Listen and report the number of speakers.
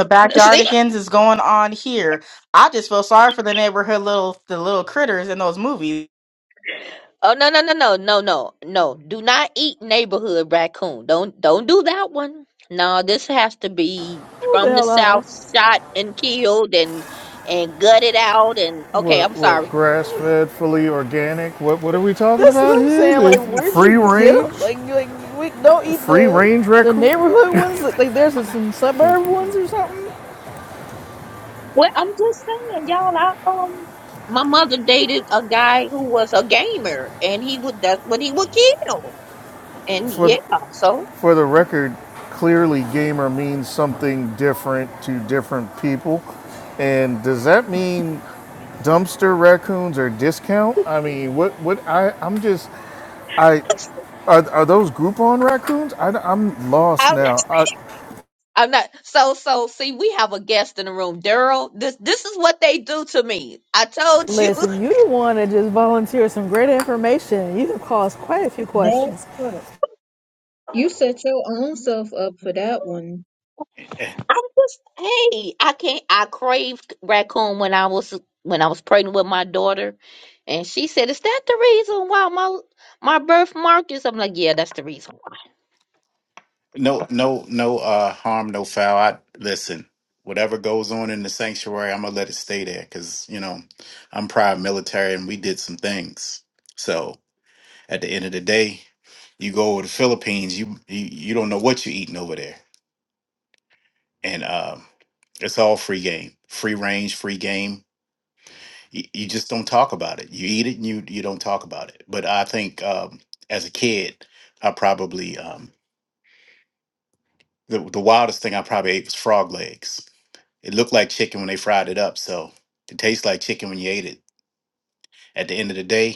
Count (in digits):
6